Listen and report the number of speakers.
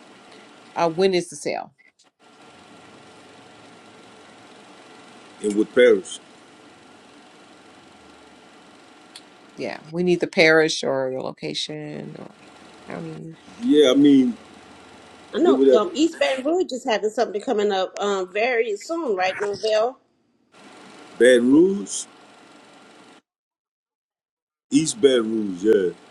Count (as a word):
three